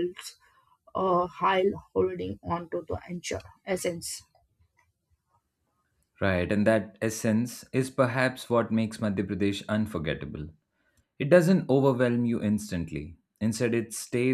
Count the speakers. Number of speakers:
two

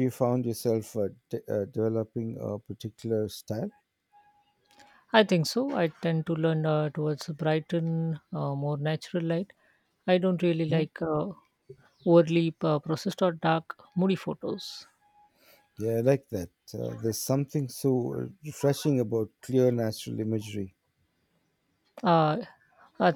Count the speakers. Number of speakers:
two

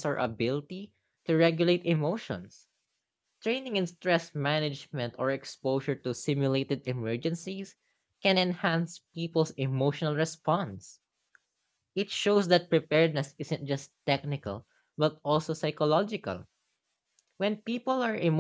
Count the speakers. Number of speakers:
one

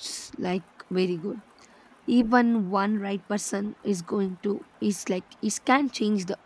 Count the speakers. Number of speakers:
one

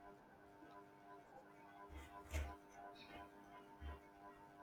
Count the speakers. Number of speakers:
zero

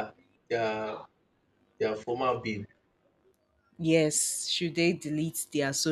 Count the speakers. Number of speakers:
two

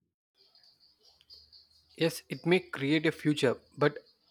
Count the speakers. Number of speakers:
one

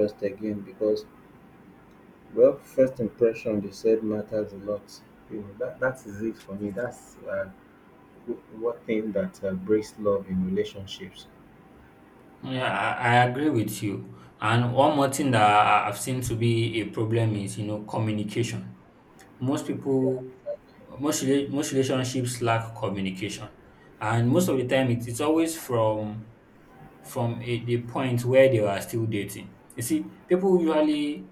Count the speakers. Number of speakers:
two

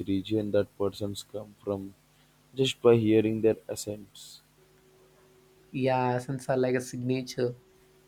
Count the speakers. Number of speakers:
two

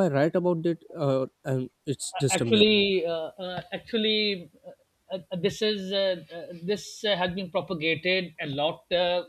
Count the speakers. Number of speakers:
two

